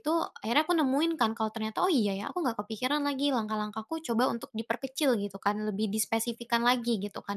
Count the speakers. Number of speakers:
1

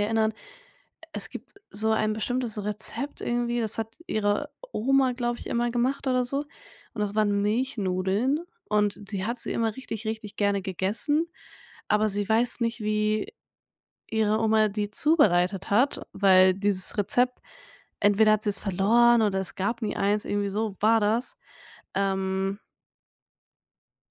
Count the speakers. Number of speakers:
1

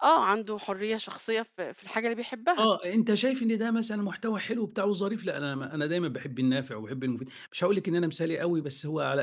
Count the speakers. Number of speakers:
2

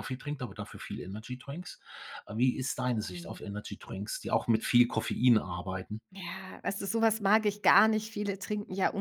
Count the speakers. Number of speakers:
2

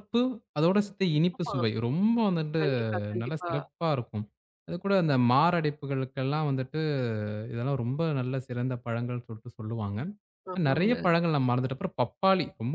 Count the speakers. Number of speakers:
2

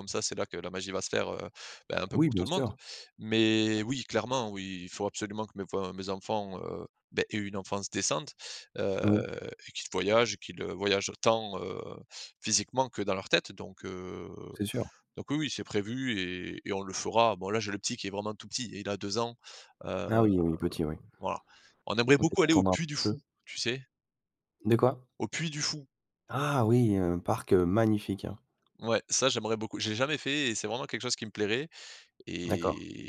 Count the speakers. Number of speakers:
2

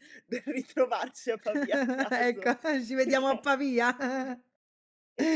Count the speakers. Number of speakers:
2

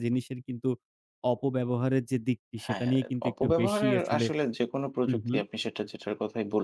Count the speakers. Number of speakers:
2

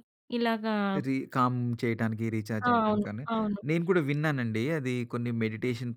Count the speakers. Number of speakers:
2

